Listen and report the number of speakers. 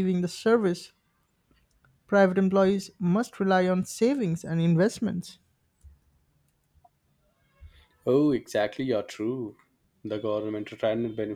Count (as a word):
two